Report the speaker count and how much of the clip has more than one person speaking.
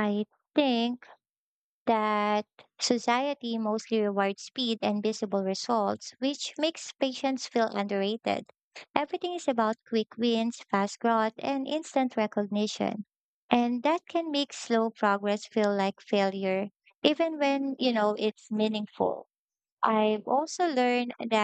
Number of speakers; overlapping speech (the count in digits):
1, no overlap